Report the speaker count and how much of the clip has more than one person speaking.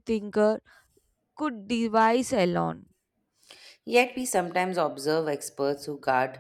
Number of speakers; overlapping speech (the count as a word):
two, no overlap